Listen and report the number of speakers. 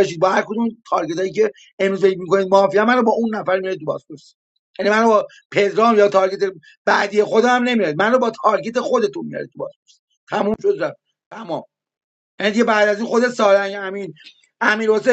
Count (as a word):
one